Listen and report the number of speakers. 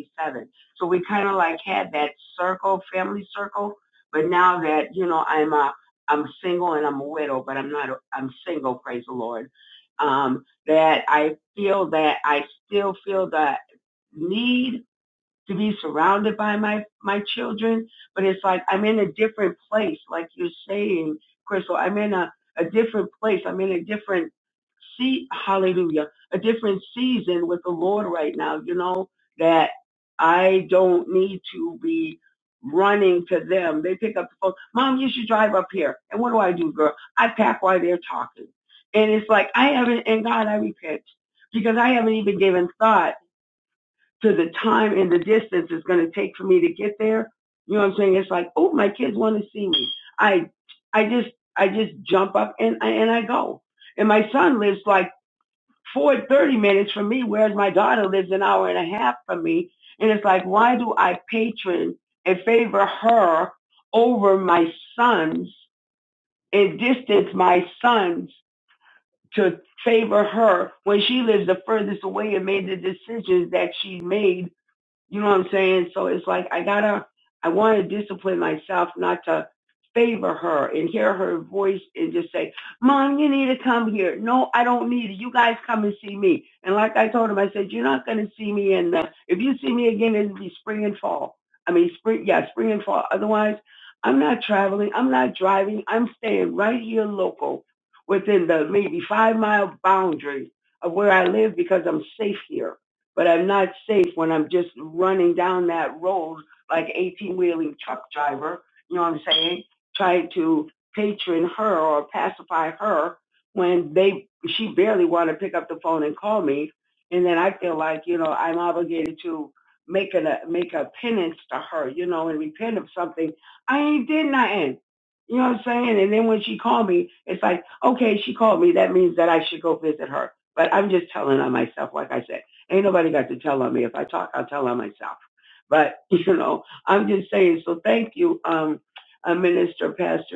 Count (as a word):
one